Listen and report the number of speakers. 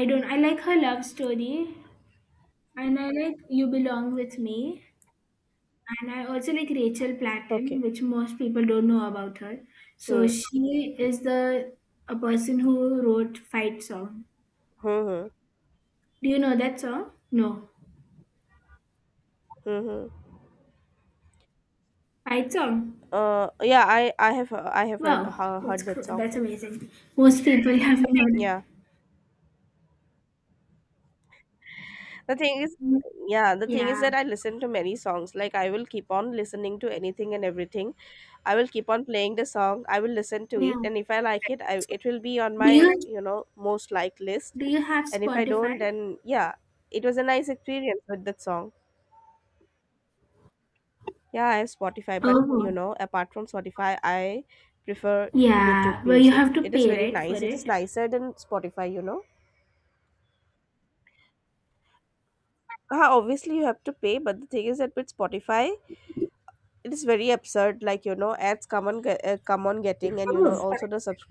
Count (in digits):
2